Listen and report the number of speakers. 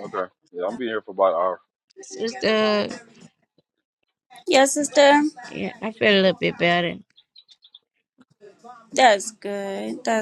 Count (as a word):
three